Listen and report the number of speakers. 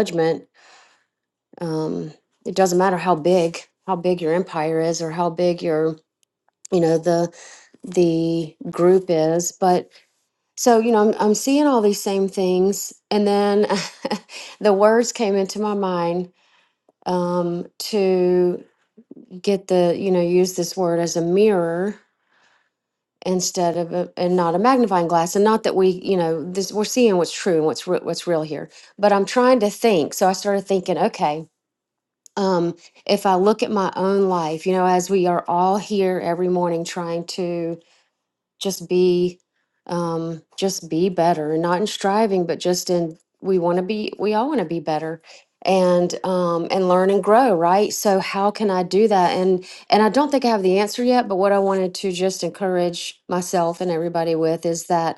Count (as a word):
one